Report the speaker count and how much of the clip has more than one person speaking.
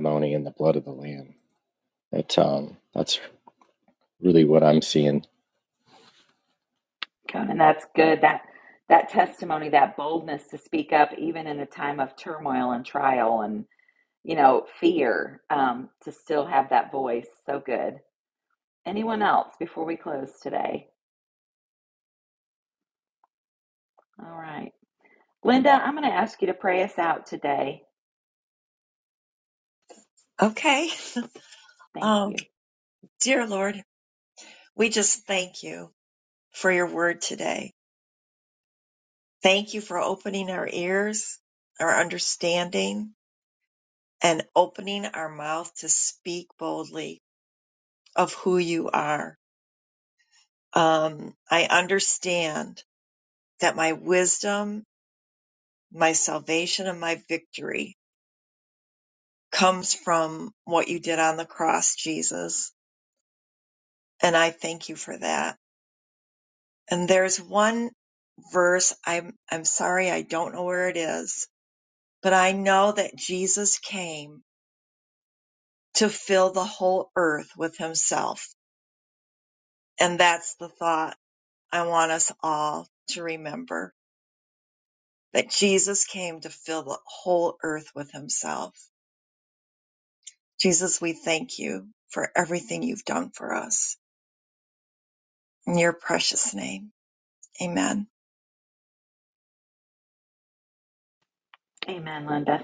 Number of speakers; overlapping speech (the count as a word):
three, under 1%